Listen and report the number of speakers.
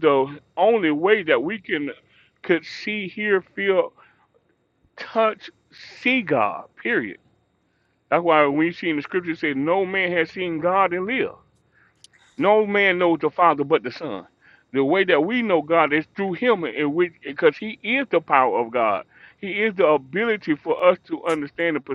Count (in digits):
1